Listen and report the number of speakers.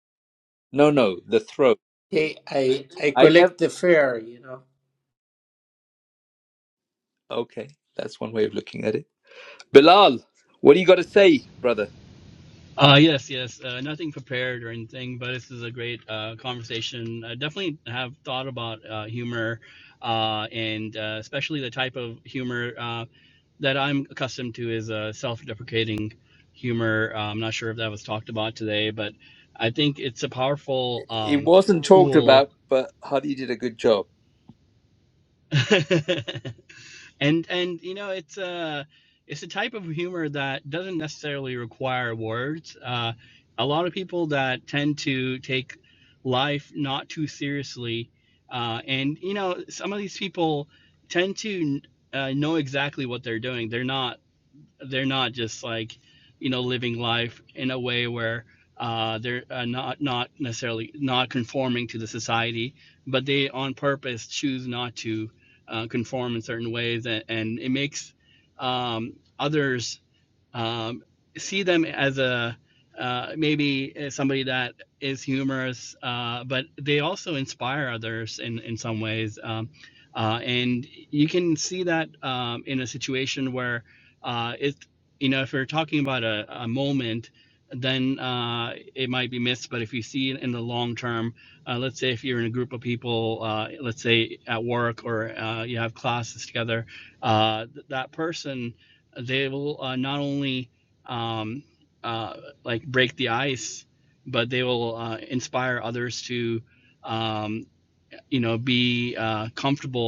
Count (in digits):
3